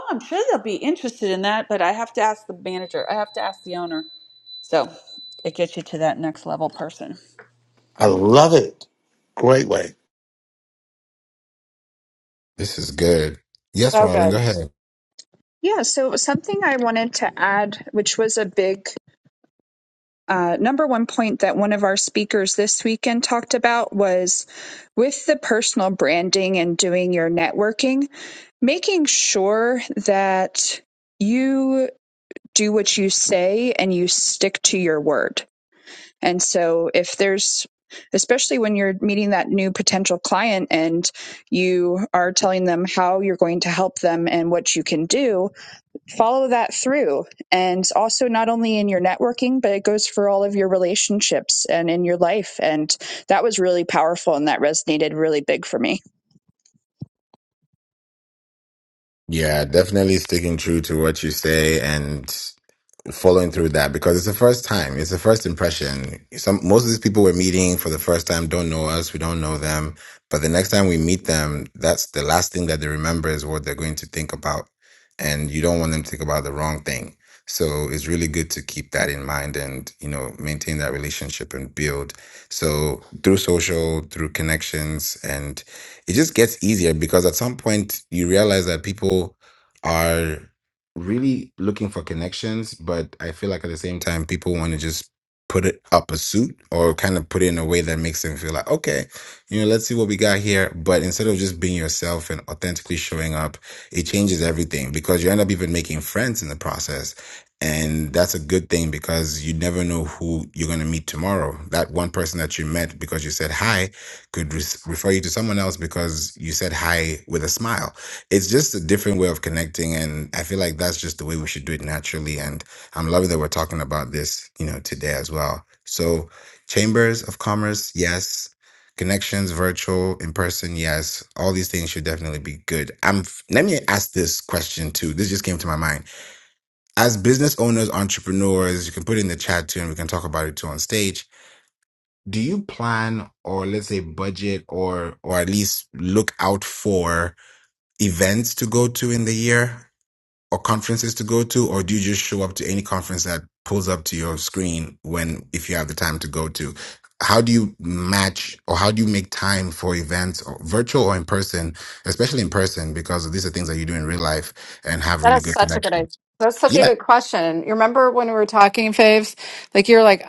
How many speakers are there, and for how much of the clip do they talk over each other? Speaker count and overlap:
five, about 1%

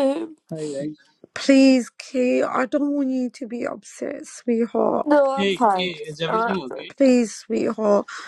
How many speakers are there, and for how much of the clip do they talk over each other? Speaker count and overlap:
three, about 17%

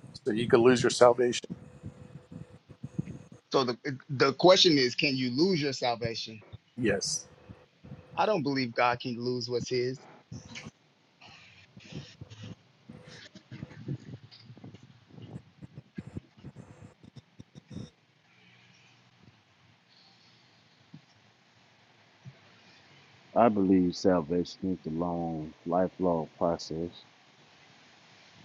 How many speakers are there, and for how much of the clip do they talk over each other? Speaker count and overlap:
three, no overlap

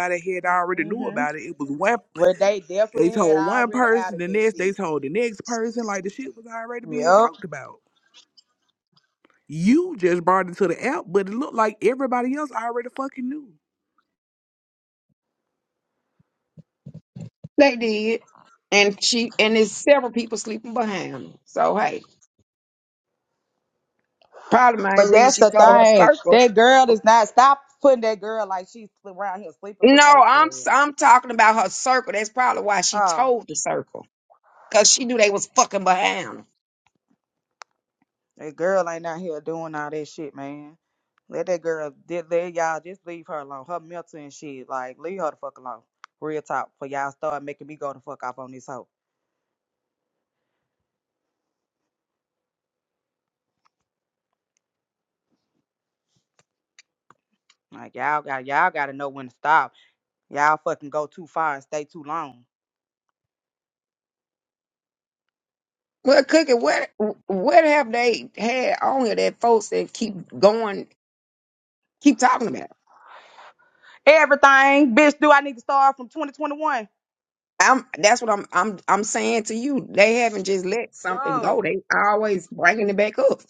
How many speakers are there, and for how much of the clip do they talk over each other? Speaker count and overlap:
three, about 7%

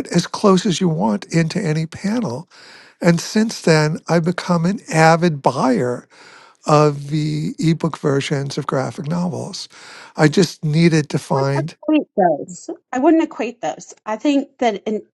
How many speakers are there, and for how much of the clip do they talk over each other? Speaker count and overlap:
two, about 3%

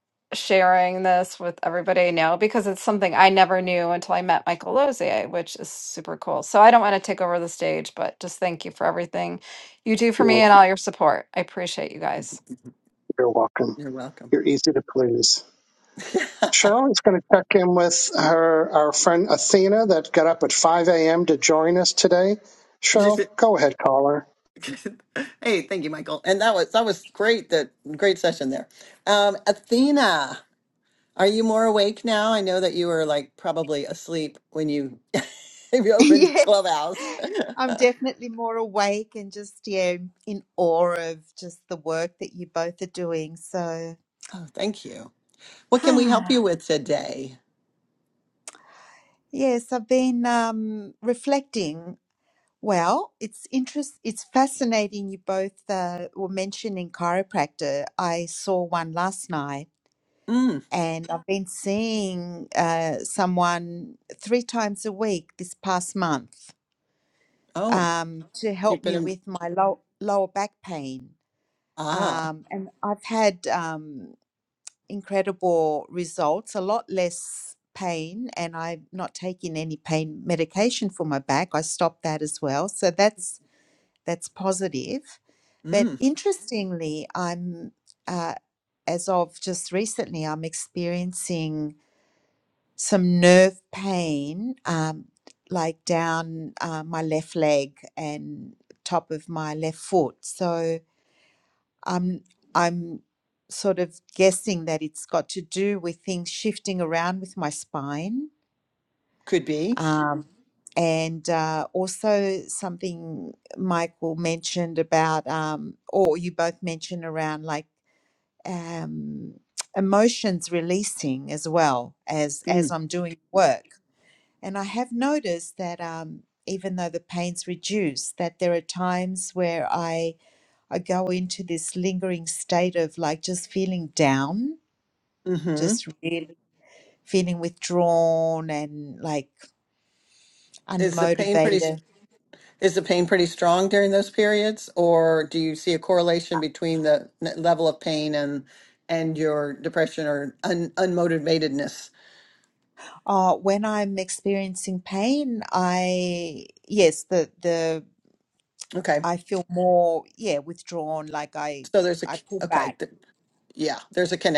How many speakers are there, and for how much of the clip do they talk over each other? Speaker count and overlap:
four, about 3%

